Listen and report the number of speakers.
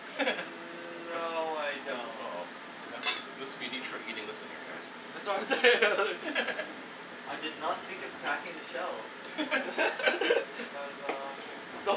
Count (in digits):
3